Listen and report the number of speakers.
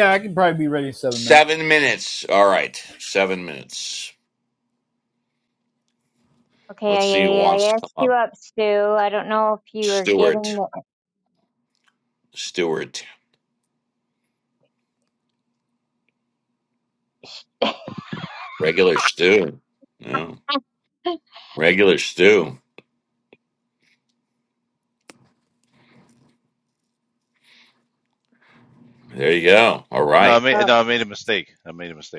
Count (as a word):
four